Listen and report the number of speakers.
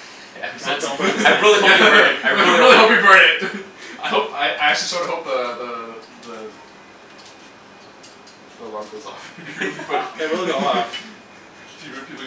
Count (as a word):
three